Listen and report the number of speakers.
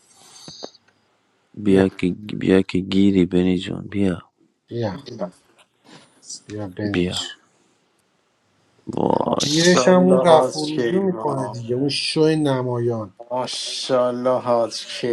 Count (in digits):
3